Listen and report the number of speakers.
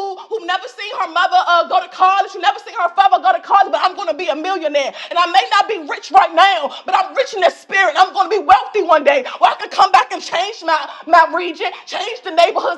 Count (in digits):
1